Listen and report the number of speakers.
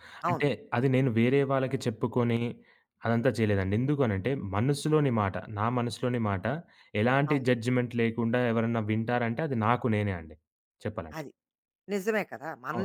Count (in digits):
2